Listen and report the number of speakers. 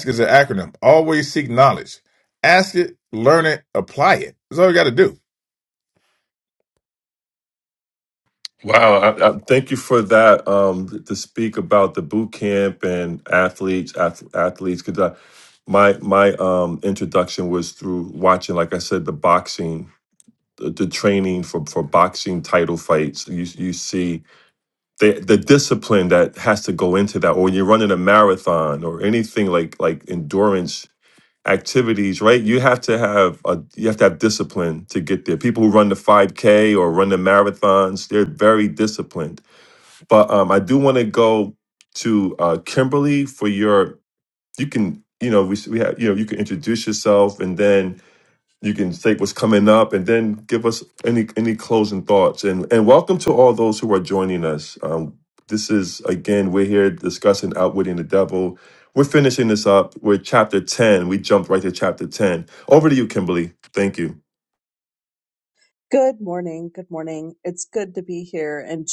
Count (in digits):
3